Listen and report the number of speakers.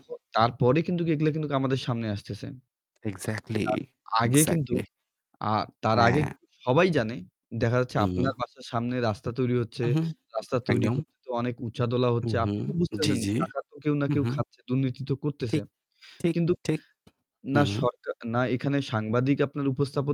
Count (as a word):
two